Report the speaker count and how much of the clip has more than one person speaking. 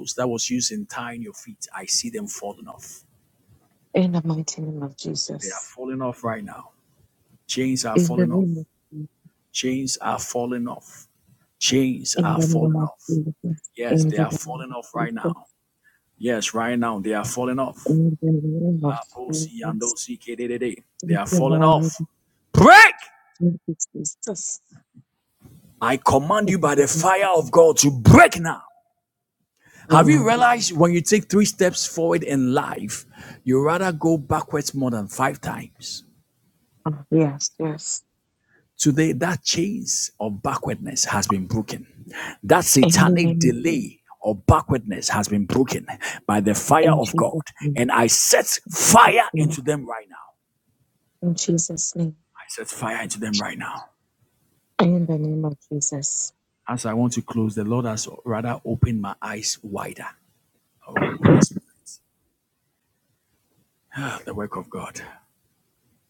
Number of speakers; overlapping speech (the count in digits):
2, about 12%